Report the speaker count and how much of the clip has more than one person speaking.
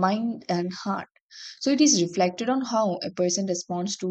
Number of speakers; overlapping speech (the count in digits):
1, no overlap